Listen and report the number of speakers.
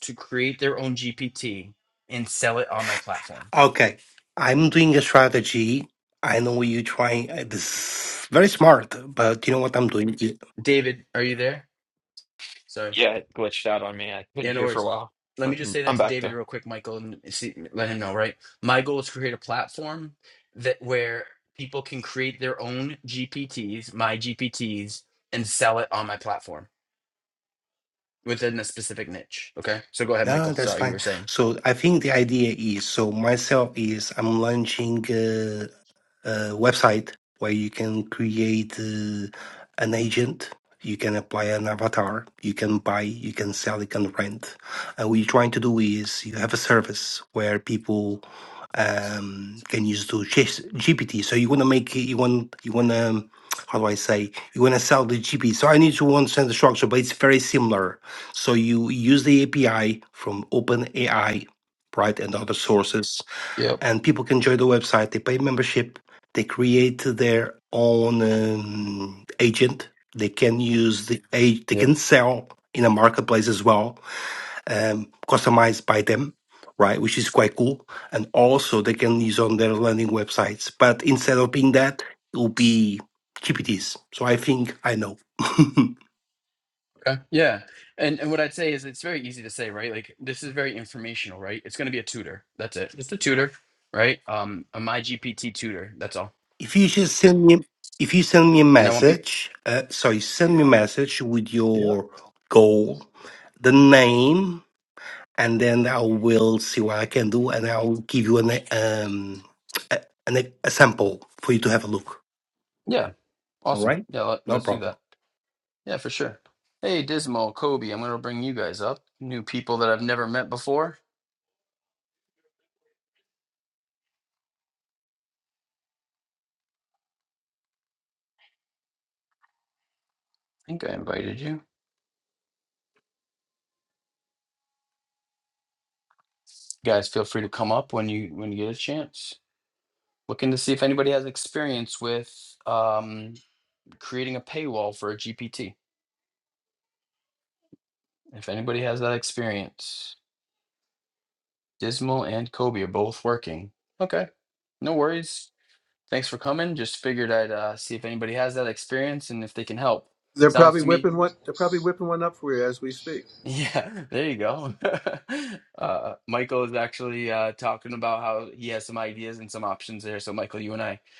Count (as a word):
four